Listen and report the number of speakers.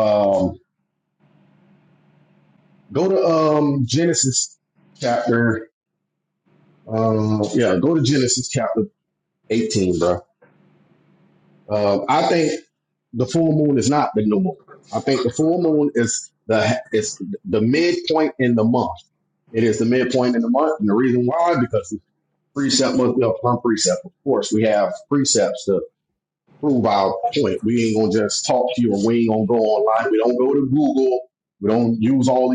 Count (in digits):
1